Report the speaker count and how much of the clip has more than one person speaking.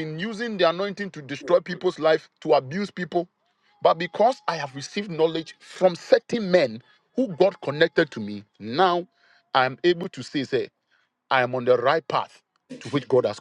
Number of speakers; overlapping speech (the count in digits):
1, no overlap